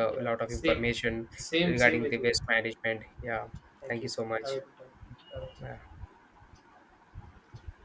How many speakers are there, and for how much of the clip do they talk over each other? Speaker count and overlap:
2, about 18%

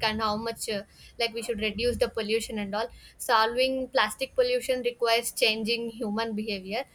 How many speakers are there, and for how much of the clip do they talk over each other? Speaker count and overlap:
1, no overlap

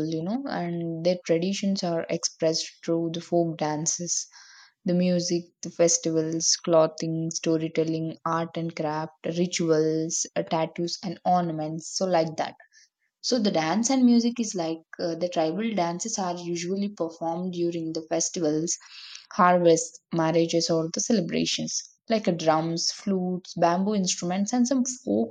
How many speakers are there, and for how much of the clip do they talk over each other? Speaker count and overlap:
1, no overlap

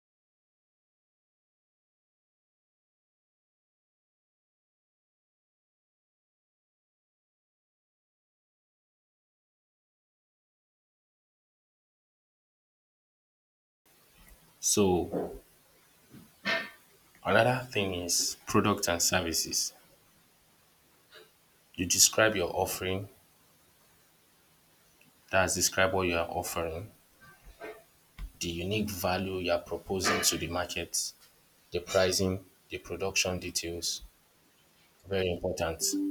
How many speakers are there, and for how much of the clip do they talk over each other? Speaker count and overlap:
1, no overlap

